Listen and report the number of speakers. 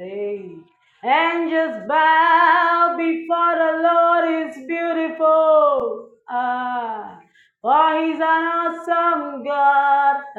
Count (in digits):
1